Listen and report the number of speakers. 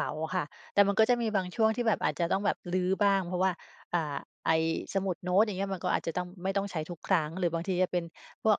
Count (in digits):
1